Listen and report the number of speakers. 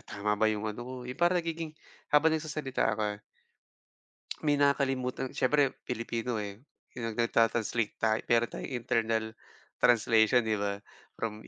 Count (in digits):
1